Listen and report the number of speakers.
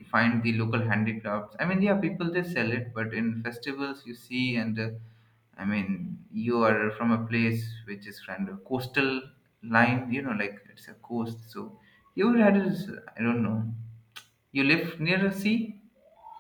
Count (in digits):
1